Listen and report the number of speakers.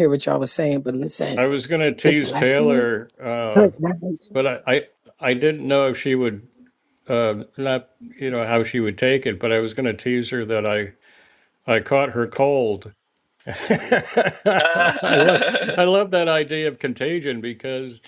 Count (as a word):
three